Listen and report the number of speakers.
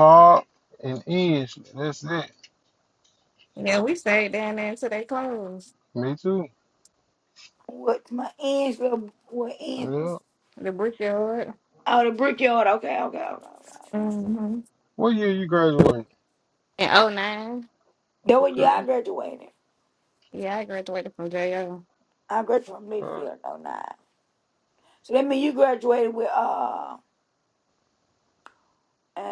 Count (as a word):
three